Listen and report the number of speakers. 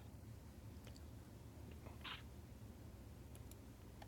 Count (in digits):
0